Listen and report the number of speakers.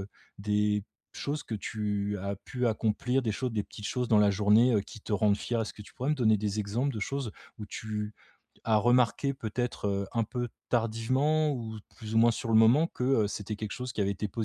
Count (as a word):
one